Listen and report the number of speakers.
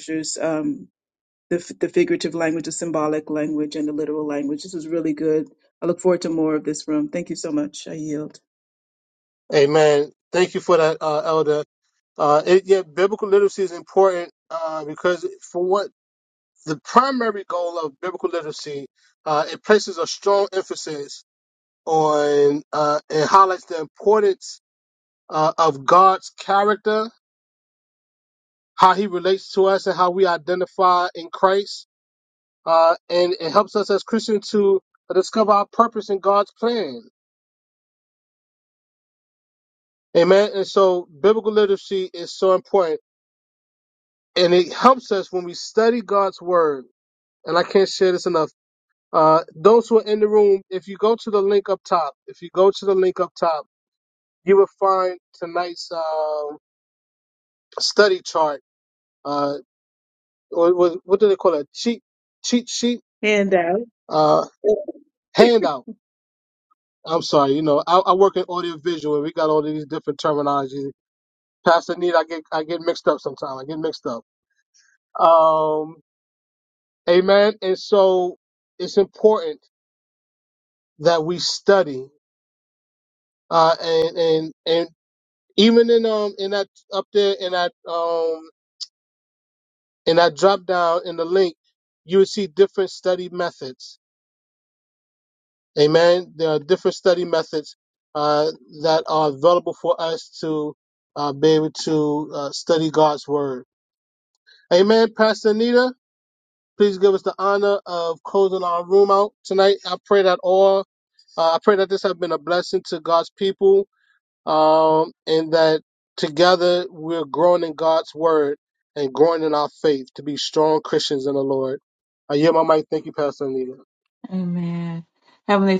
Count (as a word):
three